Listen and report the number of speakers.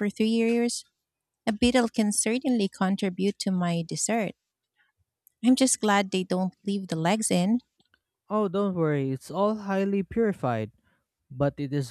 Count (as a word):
two